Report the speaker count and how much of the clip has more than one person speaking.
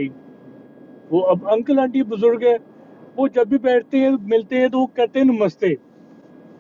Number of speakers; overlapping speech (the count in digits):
1, no overlap